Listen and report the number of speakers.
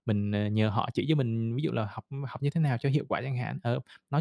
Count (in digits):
1